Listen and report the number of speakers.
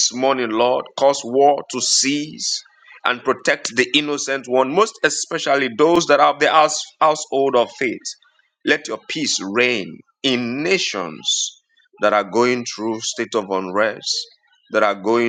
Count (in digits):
1